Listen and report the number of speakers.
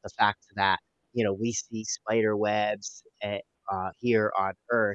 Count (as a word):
one